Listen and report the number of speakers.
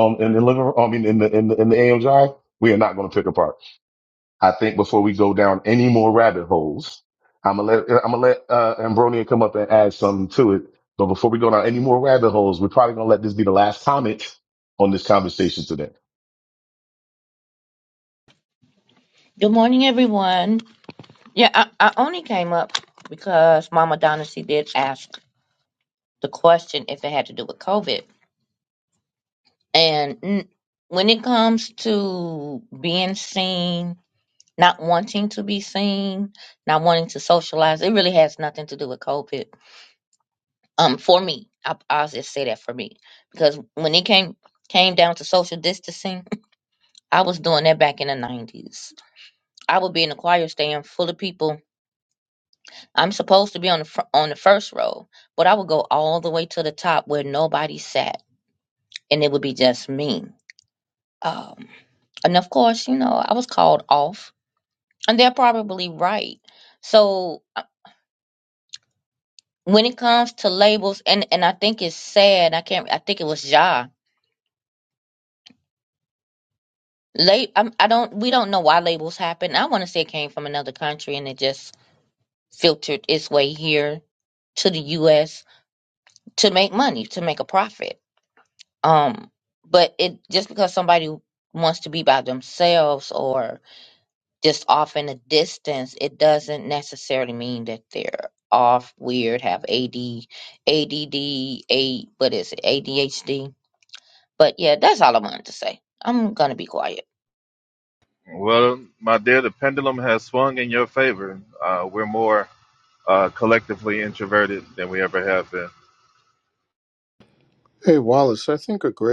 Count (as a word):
four